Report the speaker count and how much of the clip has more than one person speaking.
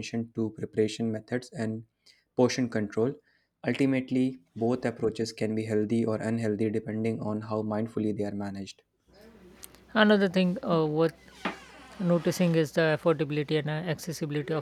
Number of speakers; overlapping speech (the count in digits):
2, no overlap